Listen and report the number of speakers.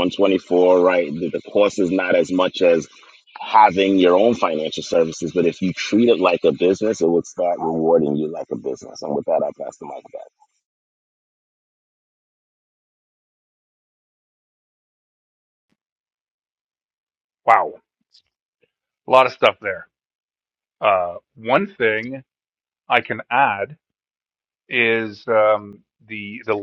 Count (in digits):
2